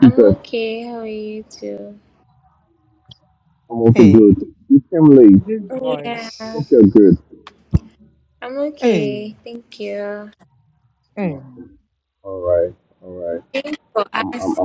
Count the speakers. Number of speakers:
3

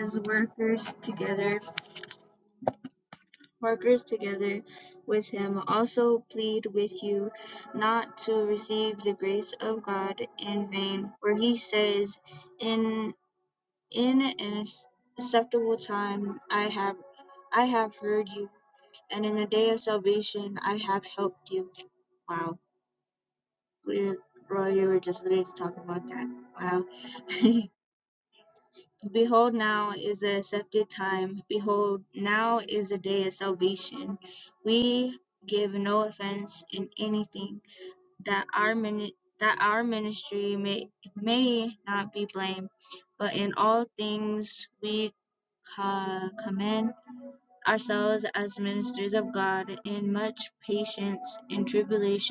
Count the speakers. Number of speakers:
1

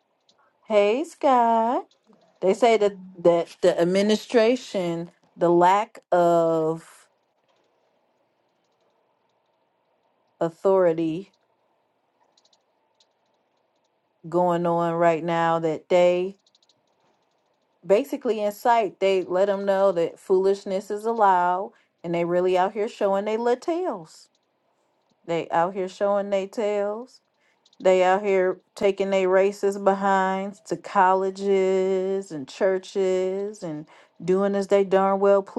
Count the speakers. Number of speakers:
1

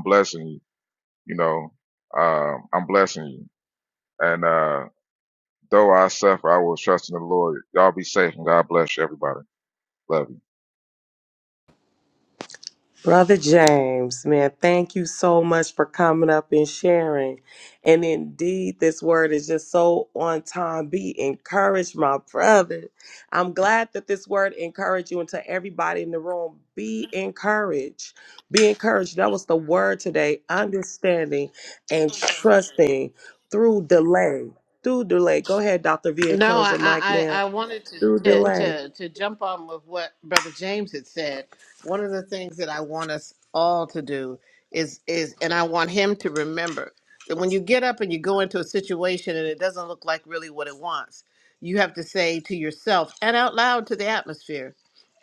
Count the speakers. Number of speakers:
3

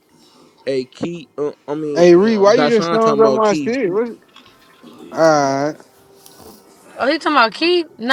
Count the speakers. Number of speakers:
3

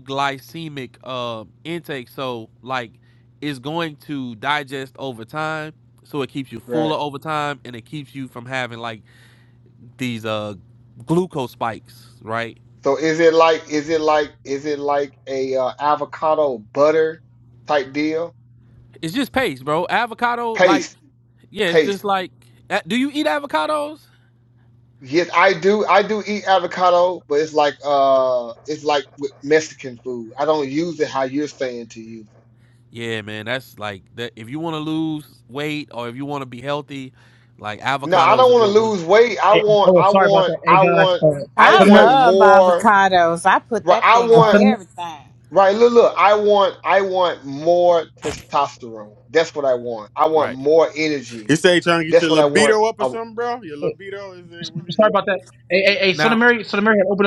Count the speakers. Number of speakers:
5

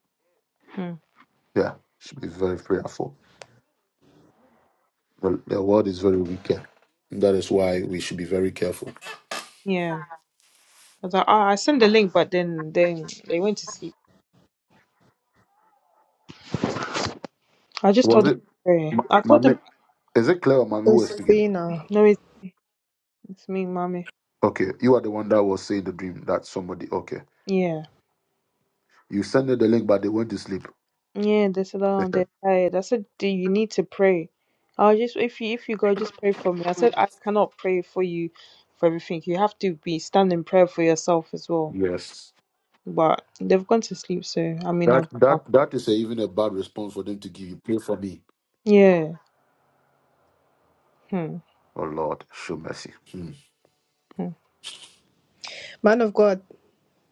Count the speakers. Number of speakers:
3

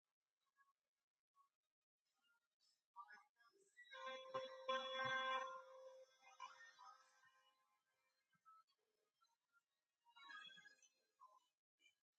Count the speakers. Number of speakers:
0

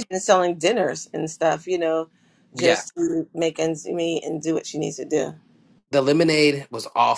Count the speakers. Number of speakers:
2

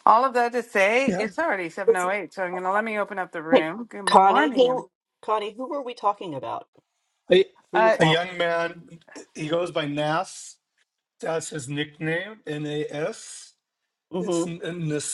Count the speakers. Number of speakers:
3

